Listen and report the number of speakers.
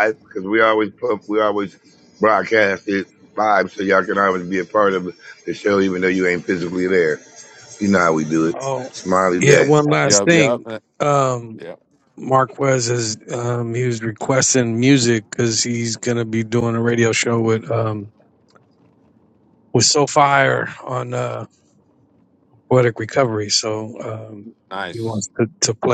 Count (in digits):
3